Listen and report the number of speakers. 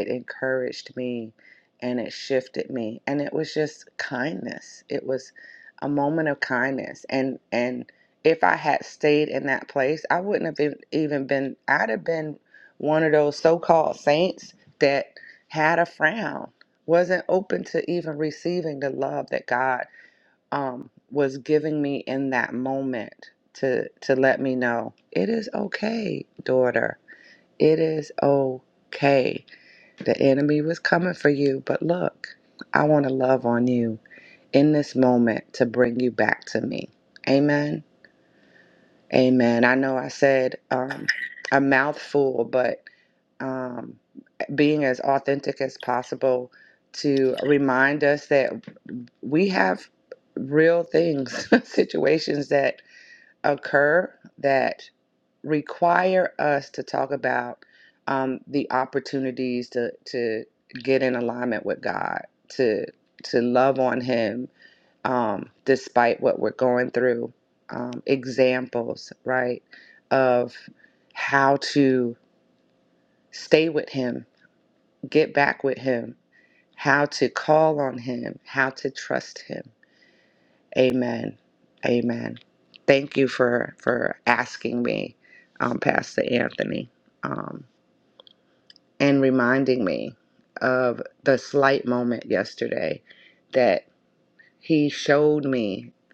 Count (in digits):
1